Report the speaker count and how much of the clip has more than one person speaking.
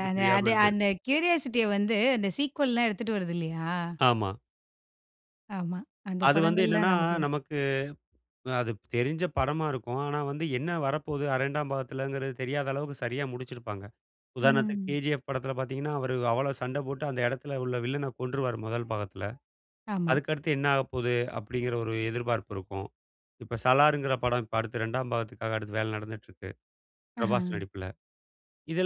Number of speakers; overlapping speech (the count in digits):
2, about 9%